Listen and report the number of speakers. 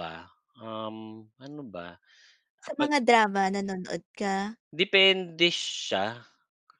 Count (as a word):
two